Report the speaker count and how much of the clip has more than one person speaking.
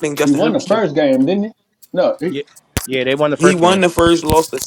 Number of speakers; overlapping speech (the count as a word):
three, about 24%